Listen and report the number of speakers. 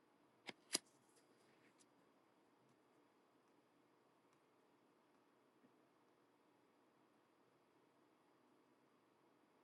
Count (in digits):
0